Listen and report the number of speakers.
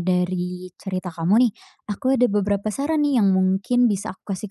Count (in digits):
1